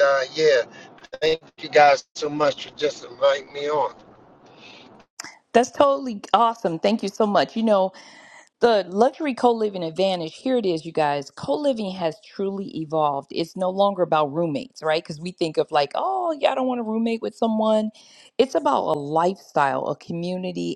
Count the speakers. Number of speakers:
two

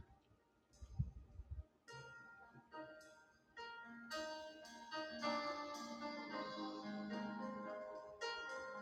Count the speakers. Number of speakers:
zero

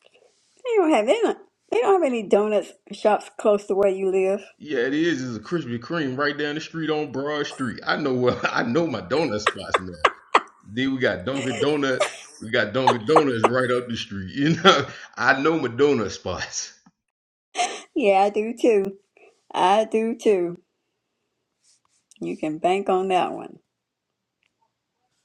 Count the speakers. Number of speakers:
two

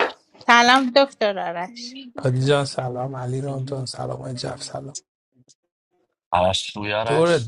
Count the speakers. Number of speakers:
three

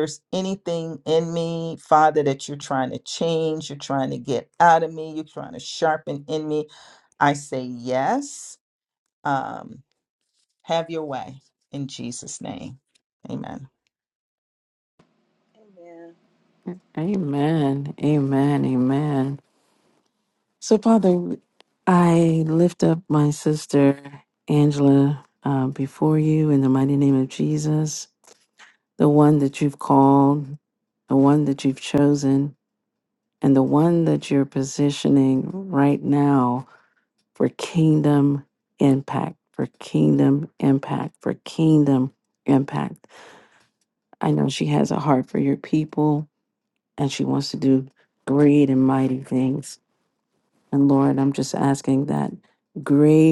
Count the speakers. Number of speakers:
two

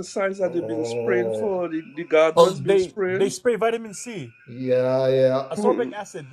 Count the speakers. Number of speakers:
three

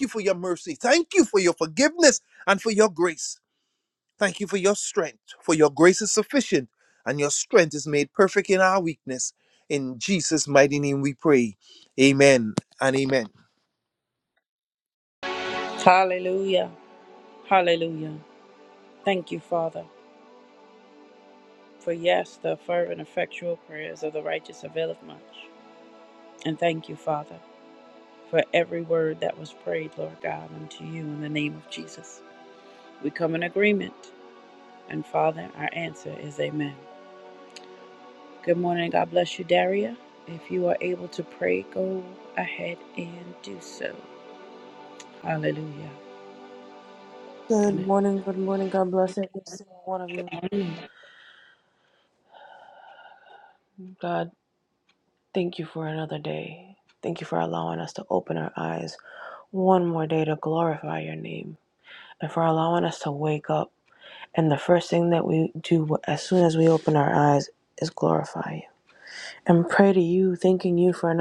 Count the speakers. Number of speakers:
three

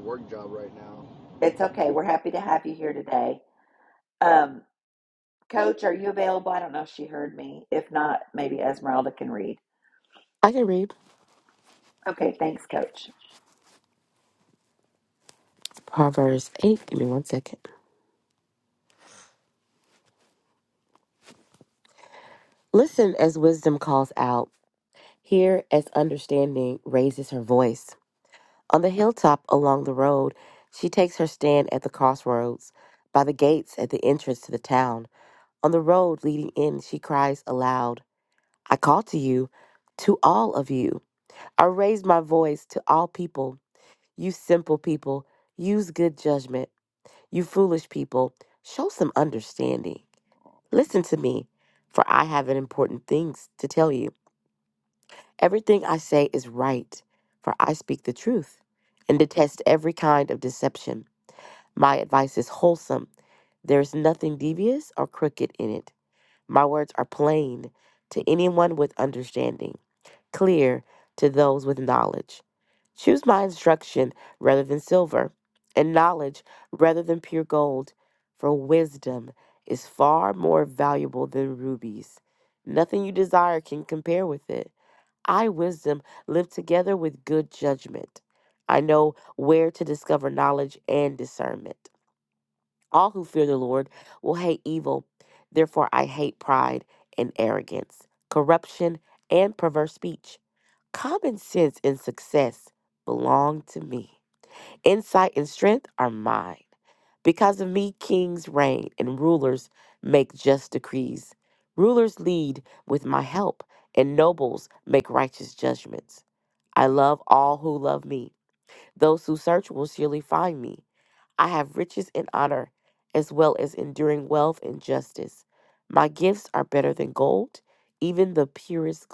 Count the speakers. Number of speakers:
three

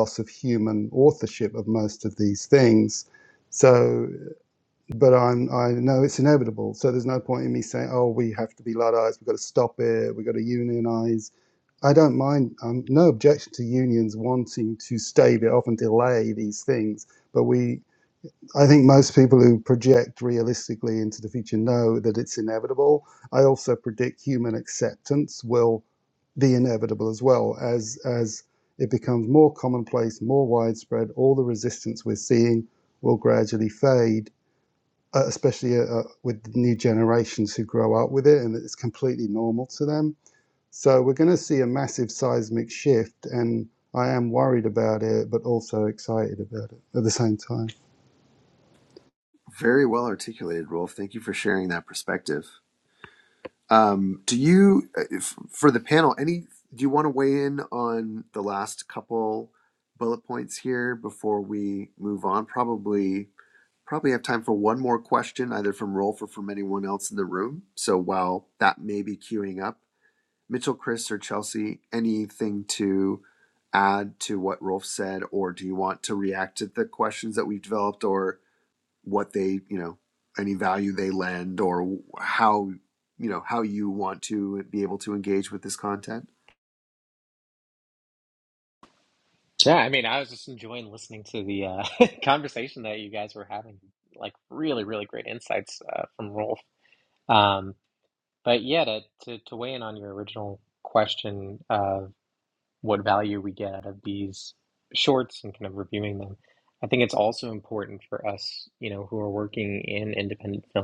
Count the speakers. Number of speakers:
three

